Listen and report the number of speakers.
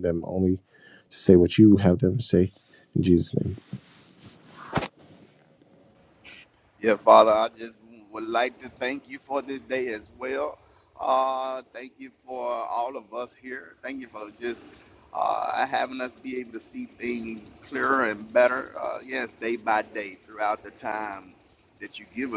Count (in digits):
2